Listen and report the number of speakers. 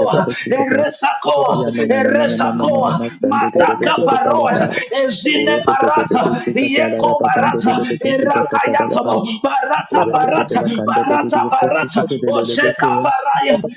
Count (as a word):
two